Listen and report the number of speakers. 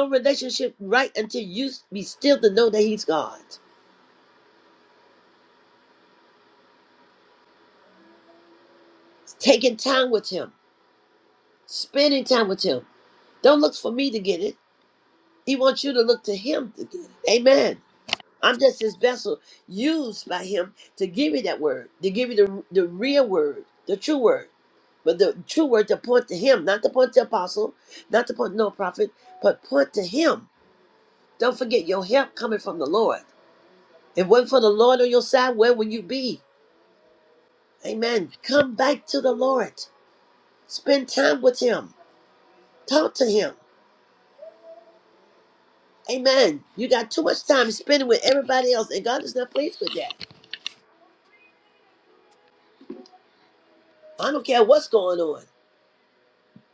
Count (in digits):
1